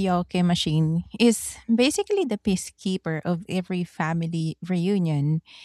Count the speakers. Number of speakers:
one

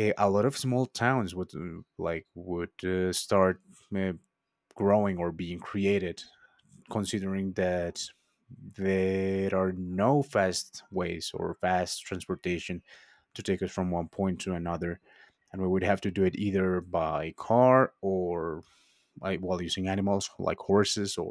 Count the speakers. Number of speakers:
one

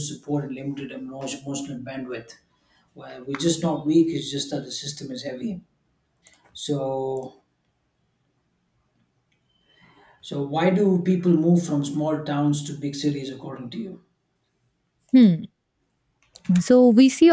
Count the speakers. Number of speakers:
two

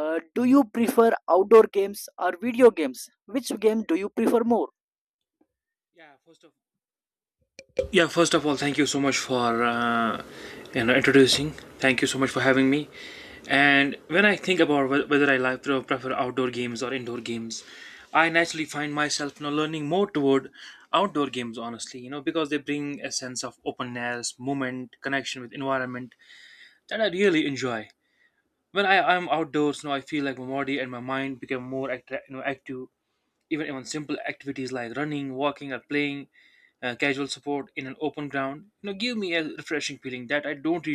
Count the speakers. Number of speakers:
two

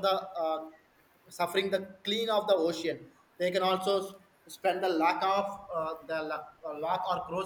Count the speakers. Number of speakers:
one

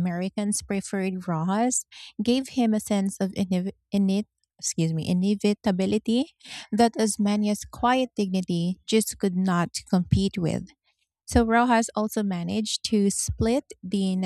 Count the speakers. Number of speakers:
one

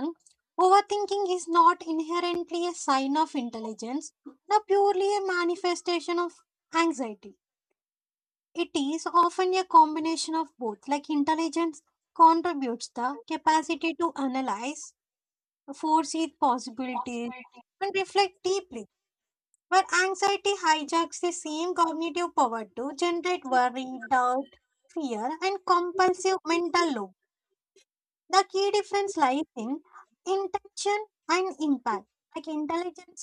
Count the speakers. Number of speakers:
one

